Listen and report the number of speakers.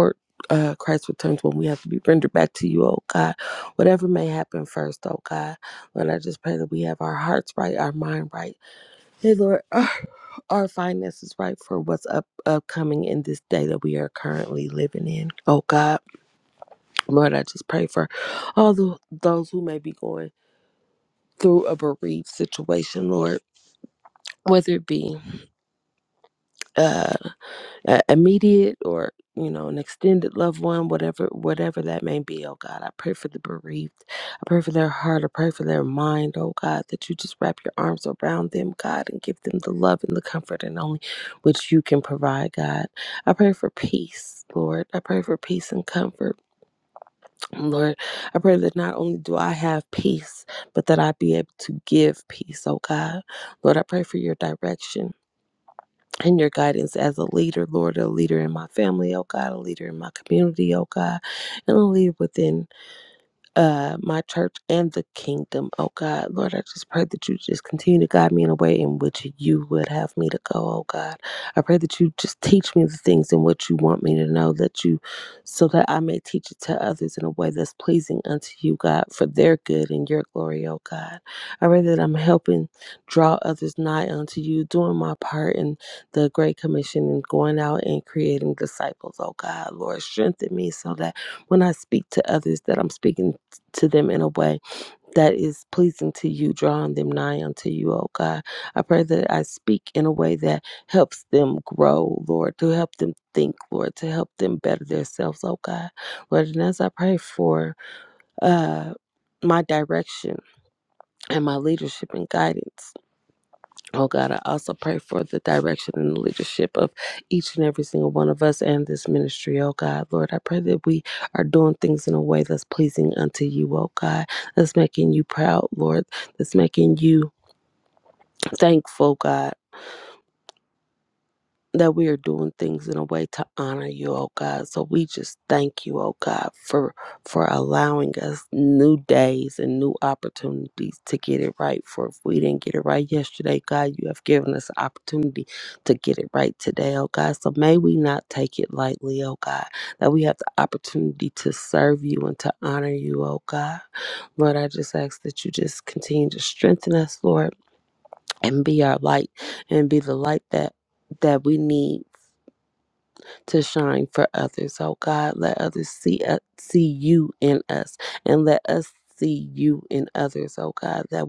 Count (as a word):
one